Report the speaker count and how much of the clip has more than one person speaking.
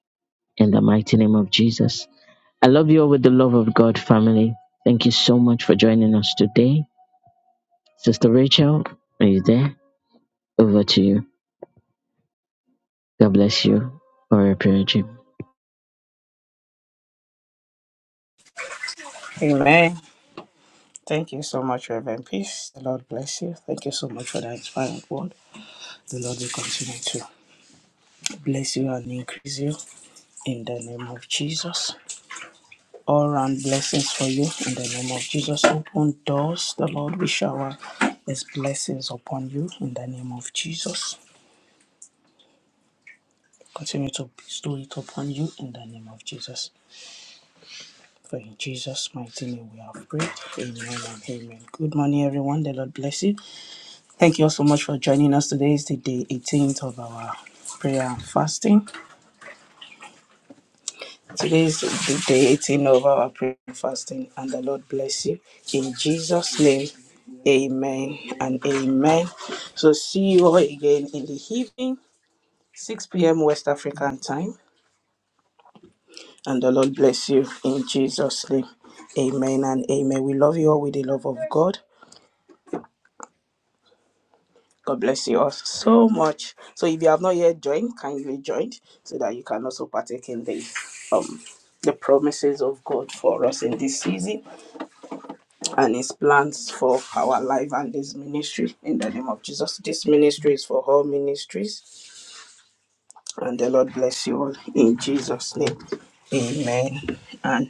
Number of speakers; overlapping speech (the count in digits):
2, no overlap